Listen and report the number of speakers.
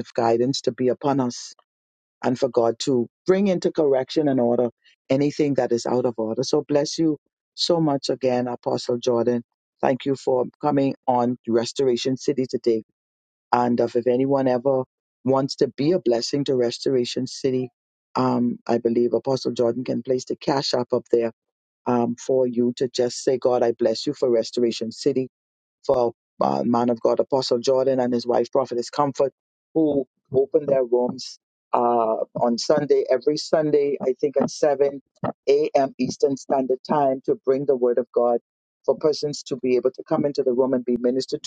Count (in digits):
1